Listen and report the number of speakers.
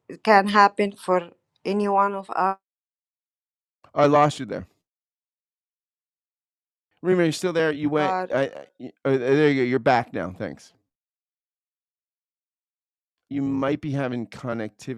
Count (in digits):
2